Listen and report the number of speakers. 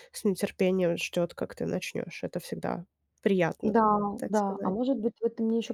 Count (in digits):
2